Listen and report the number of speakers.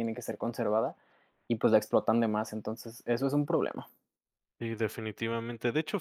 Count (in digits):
2